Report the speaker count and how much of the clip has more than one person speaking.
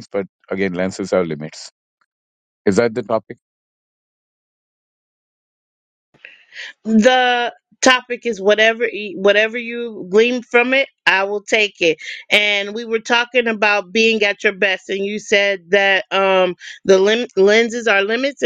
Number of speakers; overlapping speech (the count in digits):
2, no overlap